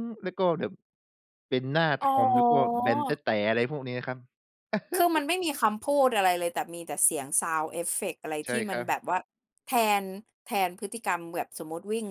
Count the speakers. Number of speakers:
2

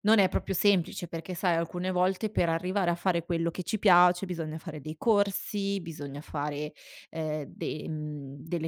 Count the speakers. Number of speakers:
1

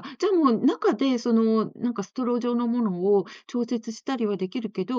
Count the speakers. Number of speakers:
1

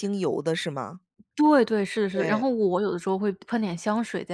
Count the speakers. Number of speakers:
2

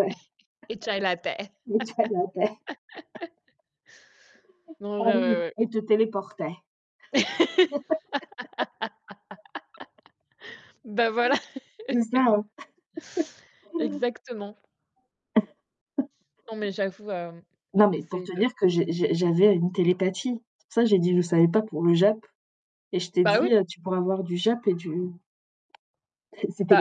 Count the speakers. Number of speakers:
2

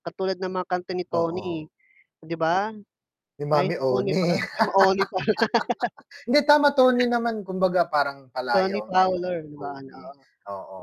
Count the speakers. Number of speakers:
2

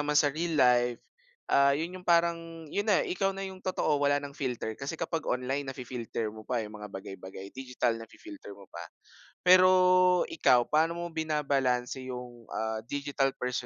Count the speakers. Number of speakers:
1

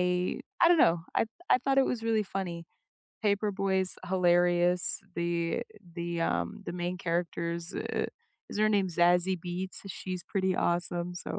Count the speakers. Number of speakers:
1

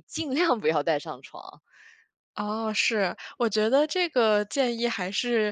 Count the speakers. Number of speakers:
2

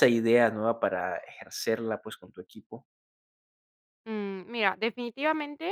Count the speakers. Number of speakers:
2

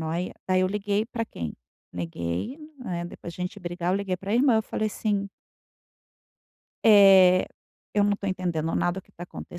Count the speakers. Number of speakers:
1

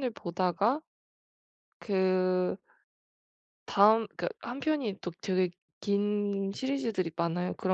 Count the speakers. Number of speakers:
1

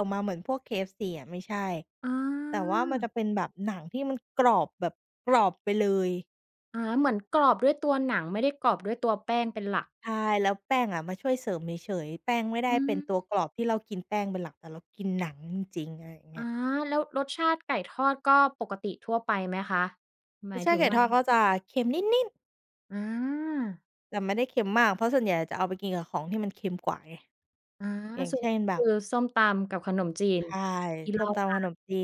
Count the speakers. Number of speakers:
2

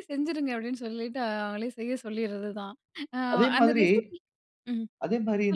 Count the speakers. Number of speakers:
2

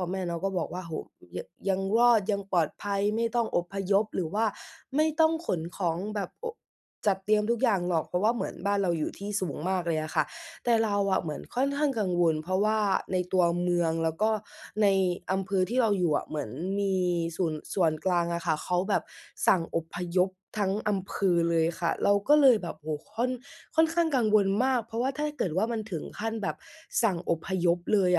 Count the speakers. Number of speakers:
1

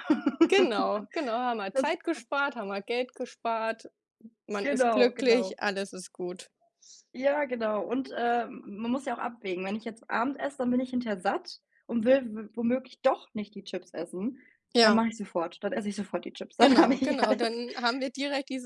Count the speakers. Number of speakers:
2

